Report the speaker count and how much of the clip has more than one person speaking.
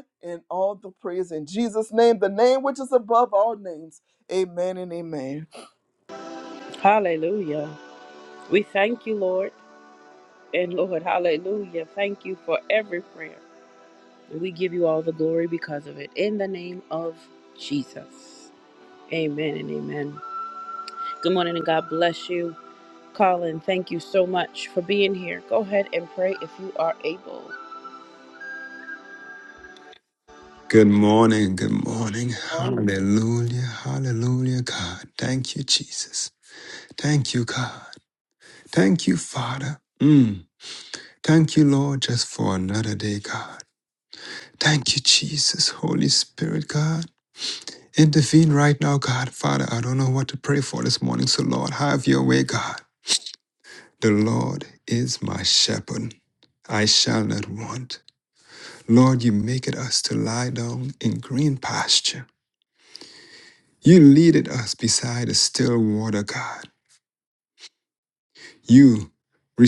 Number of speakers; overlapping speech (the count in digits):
3, about 1%